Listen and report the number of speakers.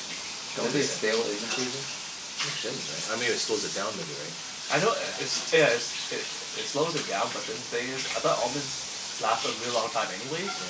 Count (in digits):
3